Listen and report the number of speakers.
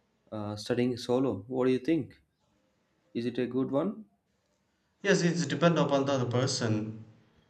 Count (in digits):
2